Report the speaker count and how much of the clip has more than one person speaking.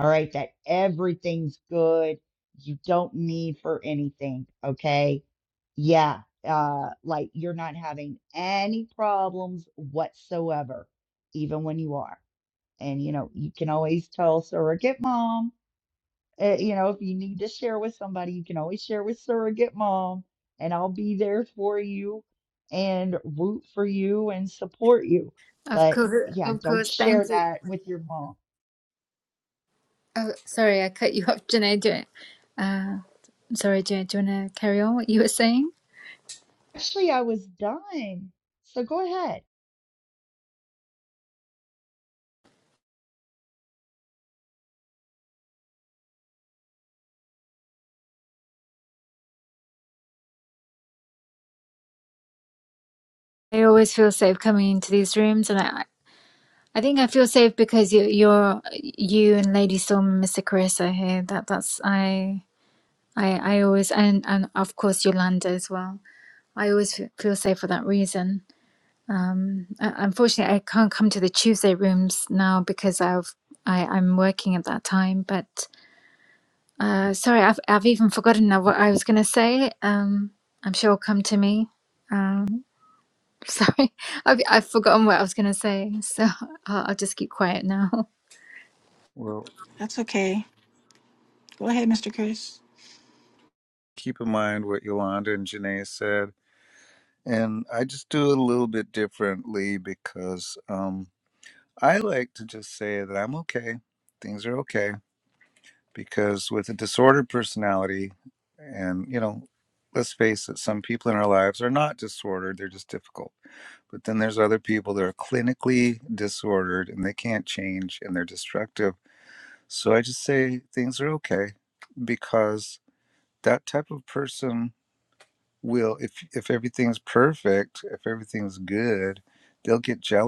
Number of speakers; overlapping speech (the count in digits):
4, about 1%